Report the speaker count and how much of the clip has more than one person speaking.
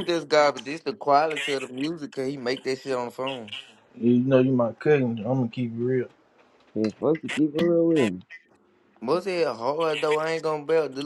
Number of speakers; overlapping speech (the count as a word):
three, no overlap